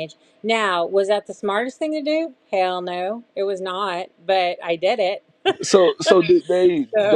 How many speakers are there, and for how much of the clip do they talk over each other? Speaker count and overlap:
2, about 4%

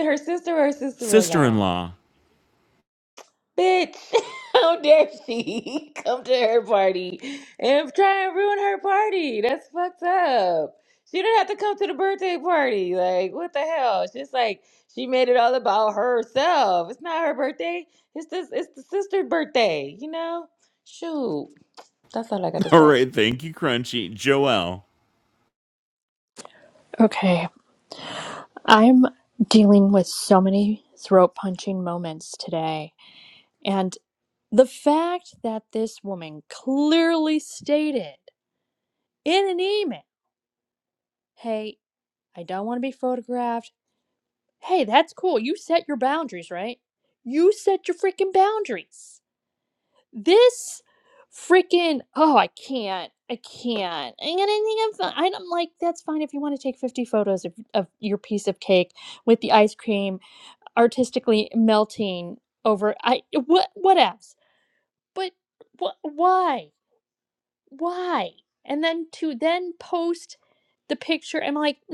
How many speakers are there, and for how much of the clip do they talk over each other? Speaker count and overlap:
3, about 1%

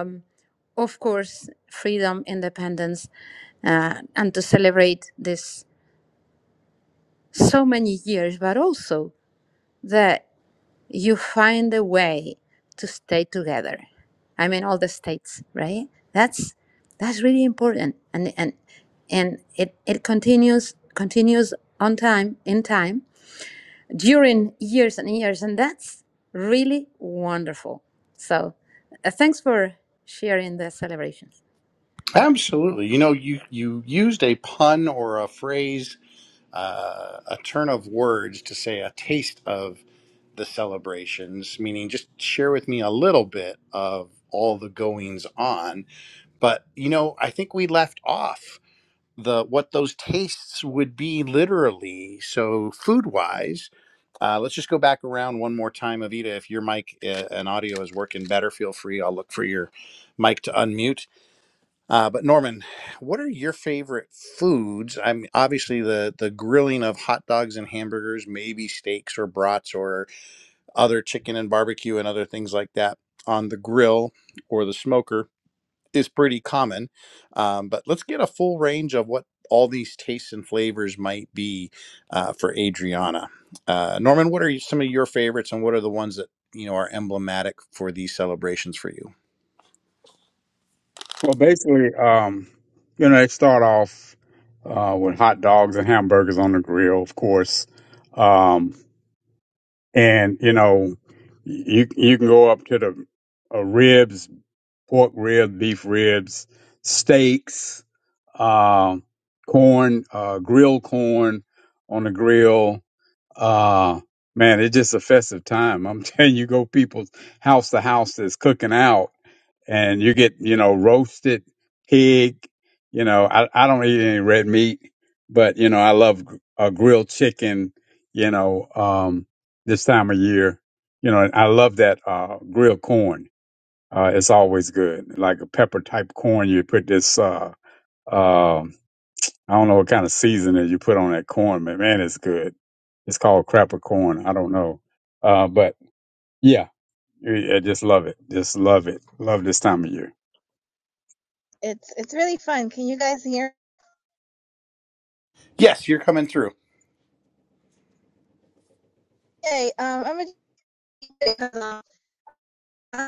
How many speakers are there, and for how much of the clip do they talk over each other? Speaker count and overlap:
4, no overlap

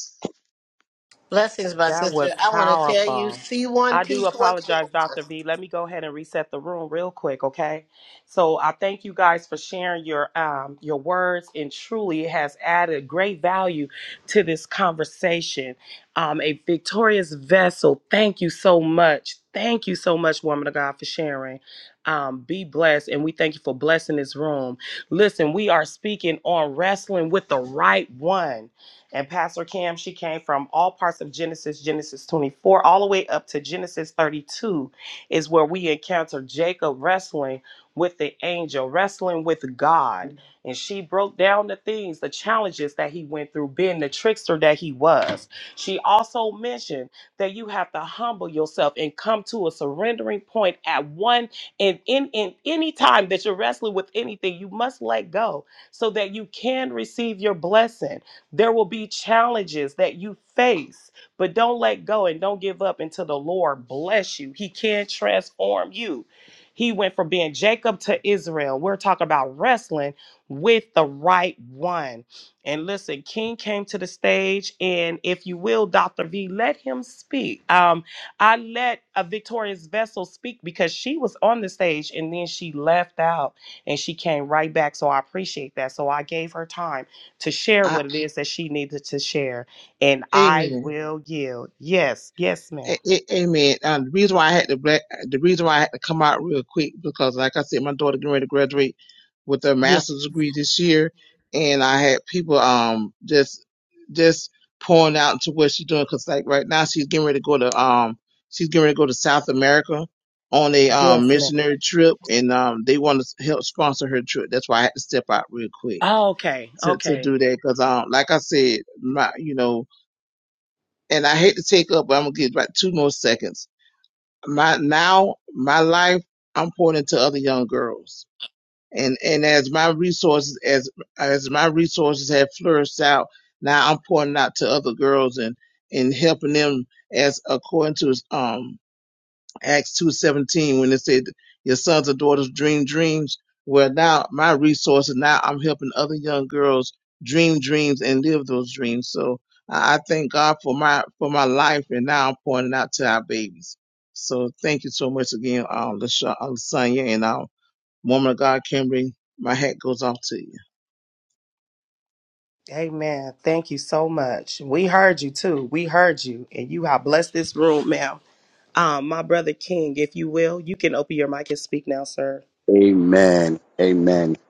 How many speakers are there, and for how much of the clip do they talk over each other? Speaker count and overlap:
4, about 3%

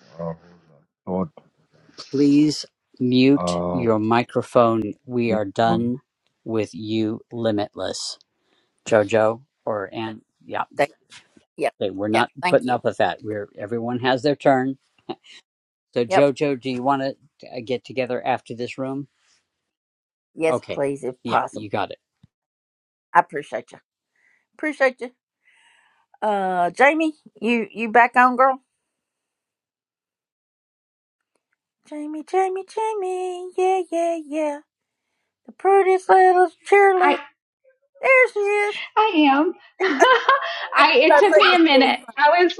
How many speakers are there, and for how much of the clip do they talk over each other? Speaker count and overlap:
4, about 9%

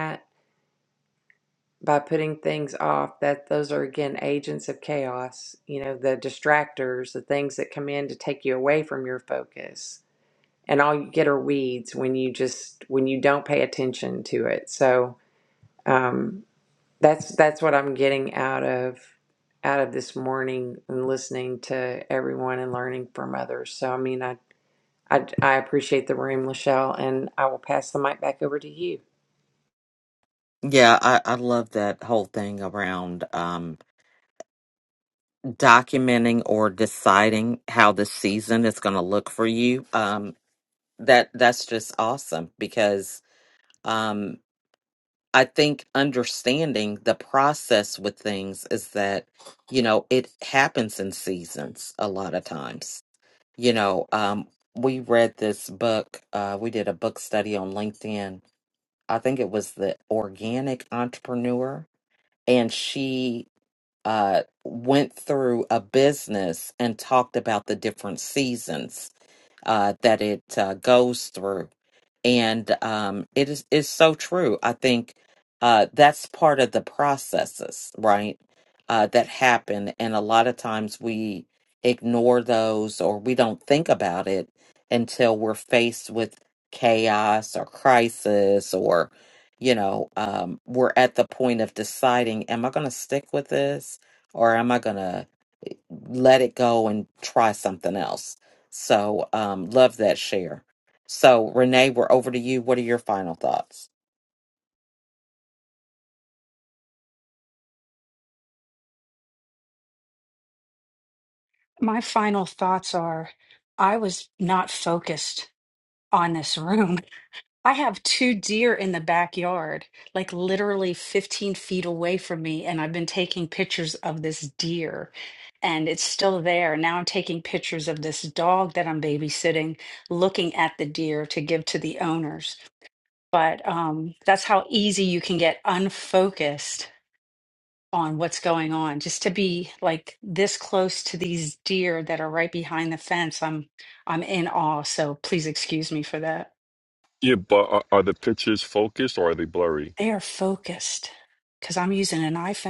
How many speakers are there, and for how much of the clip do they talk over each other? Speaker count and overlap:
4, no overlap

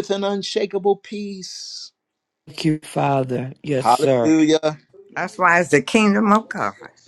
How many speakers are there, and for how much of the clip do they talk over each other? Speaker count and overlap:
3, about 8%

